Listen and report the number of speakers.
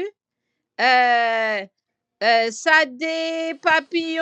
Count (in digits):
1